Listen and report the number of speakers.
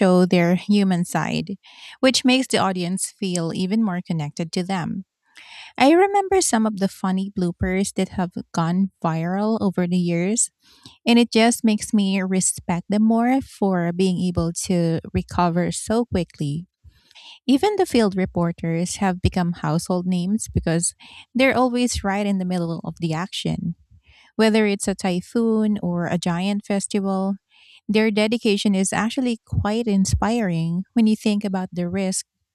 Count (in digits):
1